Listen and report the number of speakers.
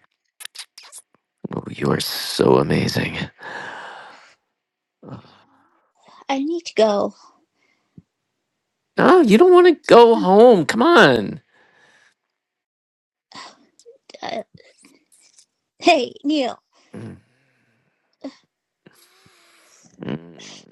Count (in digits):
2